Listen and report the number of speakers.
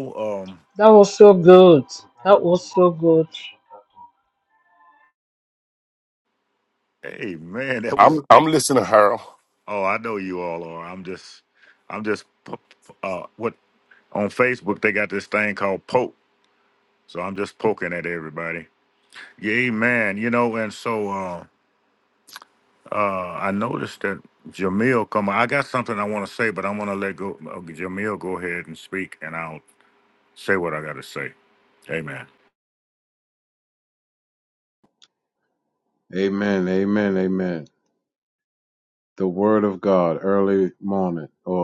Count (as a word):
four